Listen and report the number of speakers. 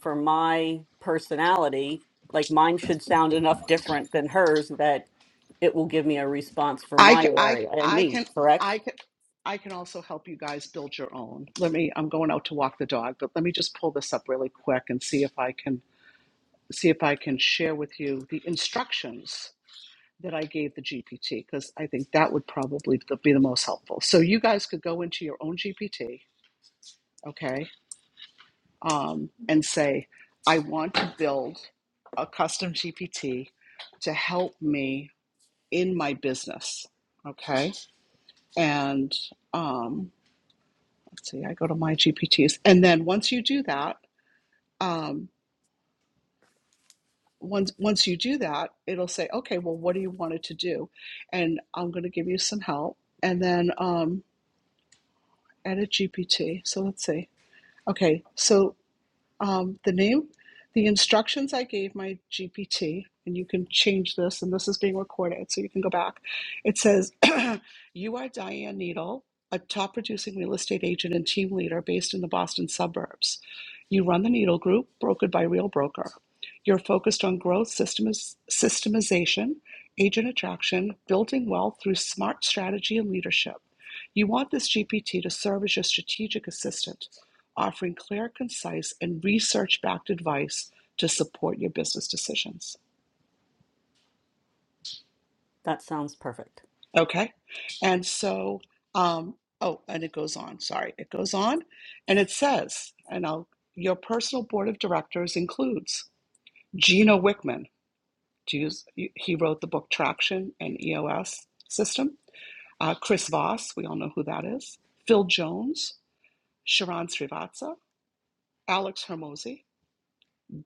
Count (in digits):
2